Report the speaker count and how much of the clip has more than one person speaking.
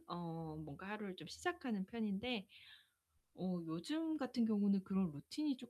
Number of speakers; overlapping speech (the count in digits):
1, no overlap